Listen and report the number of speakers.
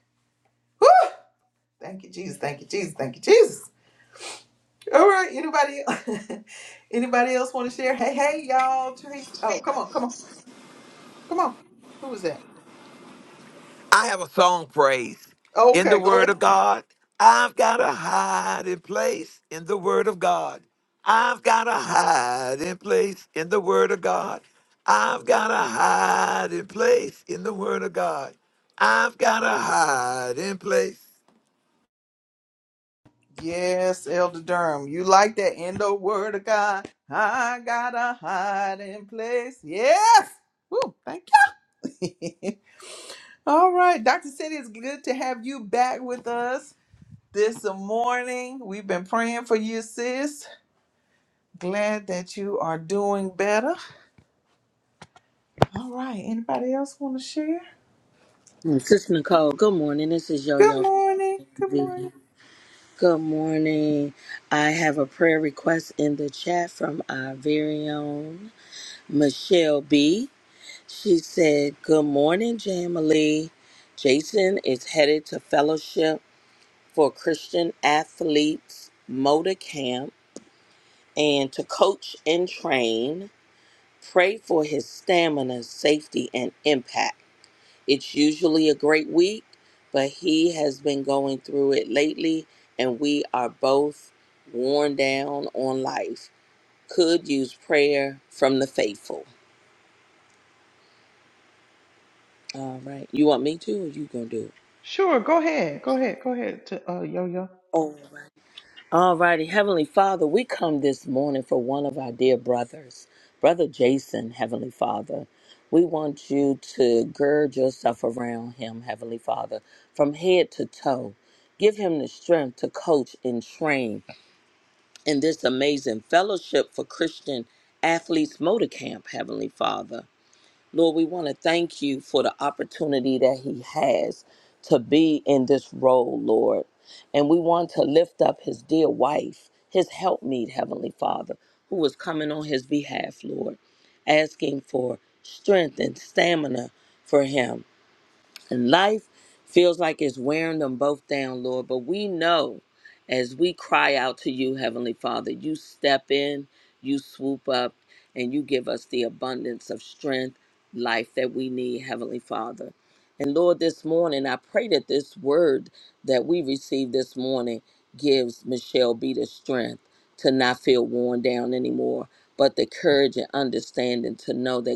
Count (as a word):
three